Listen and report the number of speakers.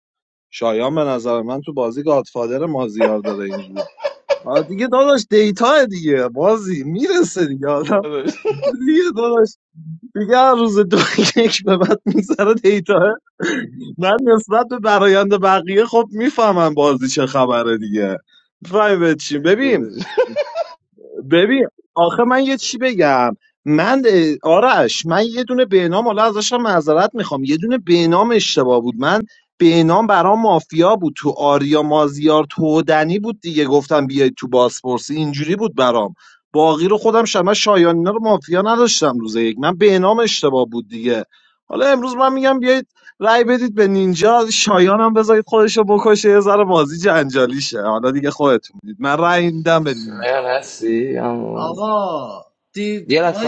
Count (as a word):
three